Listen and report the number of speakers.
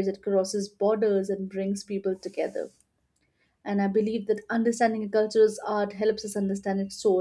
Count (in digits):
1